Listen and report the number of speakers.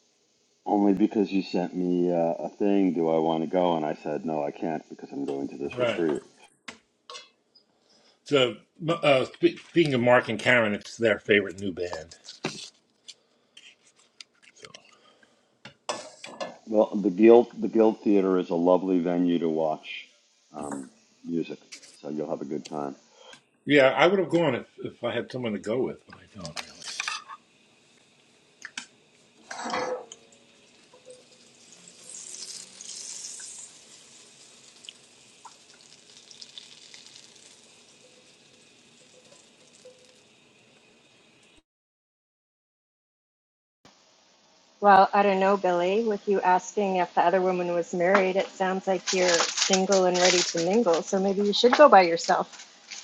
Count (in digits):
3